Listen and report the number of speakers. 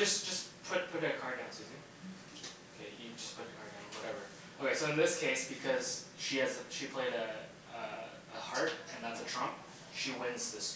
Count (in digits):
1